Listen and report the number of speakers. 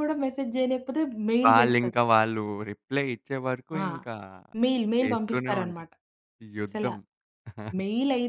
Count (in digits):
2